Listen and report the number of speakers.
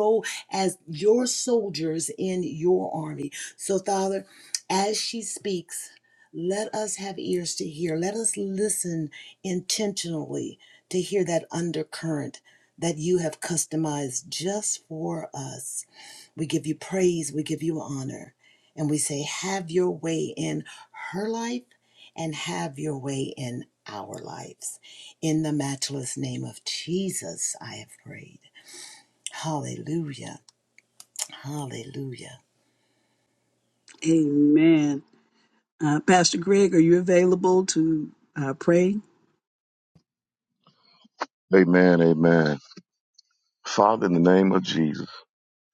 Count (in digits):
3